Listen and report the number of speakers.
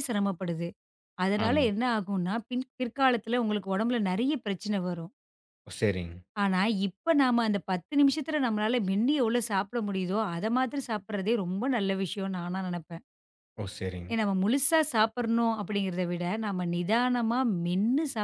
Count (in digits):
2